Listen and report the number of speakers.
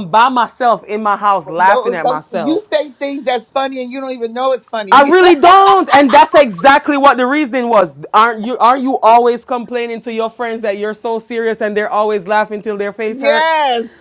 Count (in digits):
2